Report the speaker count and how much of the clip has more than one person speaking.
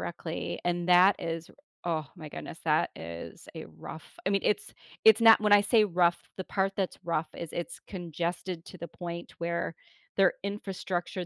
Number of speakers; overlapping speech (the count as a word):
one, no overlap